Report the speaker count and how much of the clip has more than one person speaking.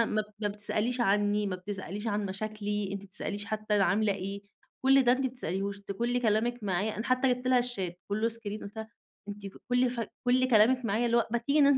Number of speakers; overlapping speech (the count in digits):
1, no overlap